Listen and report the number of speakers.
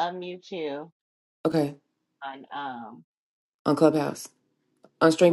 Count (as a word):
two